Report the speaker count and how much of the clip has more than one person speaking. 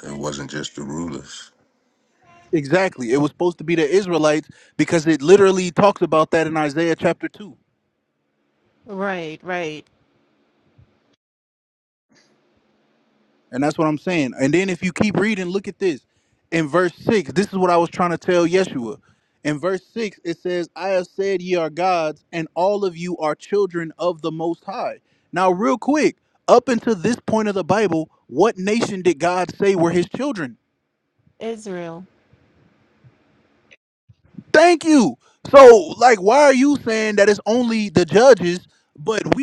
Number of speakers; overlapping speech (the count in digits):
3, no overlap